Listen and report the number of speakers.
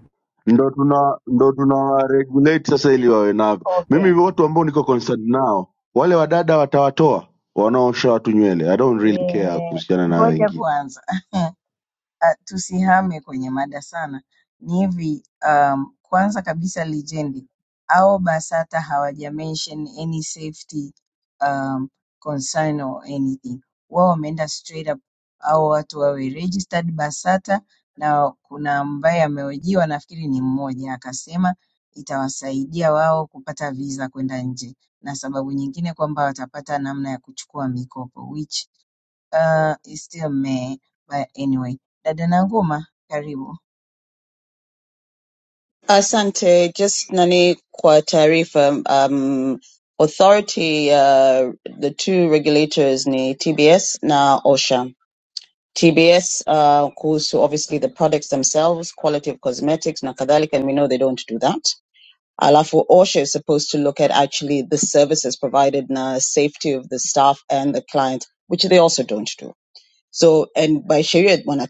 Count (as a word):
three